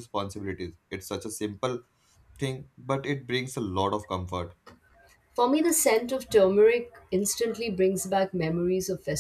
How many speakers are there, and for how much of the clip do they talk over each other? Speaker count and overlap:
two, no overlap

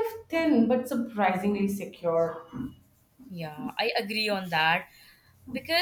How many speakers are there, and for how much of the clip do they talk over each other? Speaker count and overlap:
two, no overlap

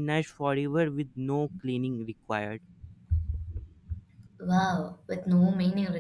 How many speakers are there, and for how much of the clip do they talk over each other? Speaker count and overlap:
two, no overlap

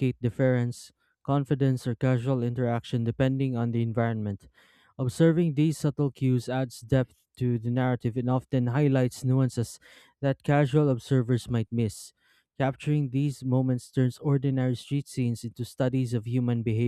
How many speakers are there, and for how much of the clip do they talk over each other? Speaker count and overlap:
one, no overlap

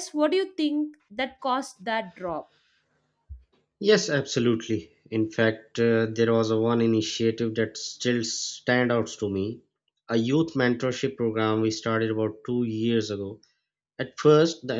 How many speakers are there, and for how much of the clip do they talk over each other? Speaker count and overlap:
two, no overlap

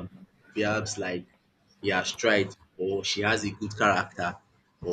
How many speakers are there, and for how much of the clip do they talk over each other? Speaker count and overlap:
one, no overlap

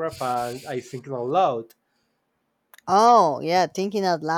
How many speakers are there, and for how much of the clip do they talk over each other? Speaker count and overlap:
two, no overlap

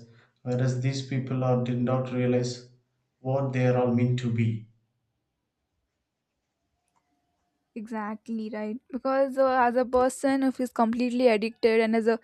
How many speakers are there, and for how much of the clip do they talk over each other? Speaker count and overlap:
two, no overlap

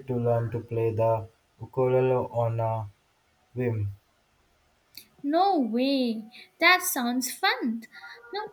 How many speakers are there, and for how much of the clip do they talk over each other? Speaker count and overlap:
two, no overlap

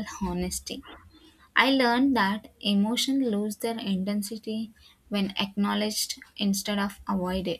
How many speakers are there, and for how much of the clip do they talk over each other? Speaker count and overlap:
one, no overlap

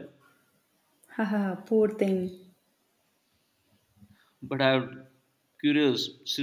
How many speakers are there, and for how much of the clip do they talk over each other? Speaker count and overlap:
two, no overlap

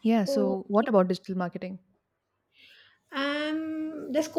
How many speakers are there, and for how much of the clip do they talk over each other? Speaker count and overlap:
two, about 15%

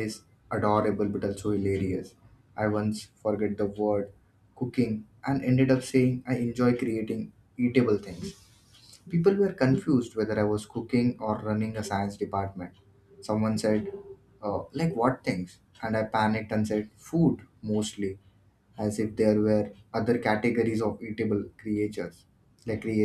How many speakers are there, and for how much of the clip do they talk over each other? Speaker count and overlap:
one, no overlap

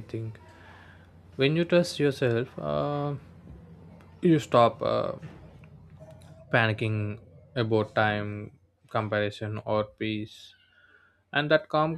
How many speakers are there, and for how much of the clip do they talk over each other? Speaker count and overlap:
one, no overlap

